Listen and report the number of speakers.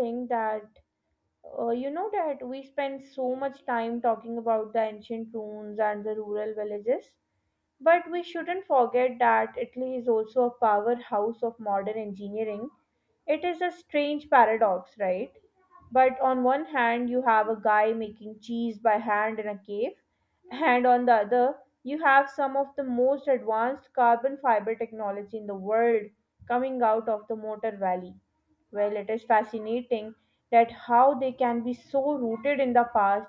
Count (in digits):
1